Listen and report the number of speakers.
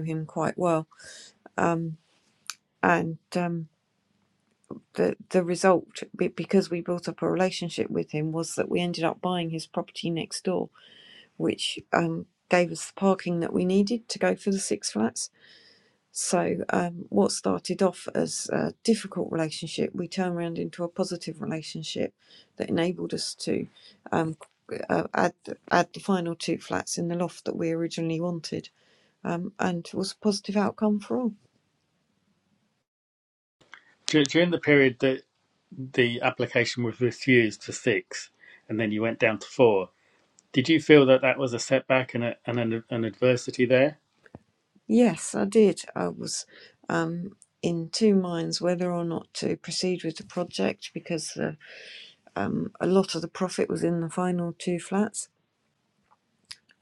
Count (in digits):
2